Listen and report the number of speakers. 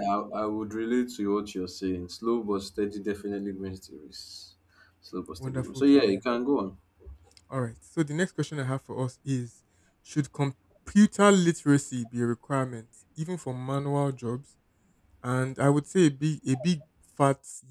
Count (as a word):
two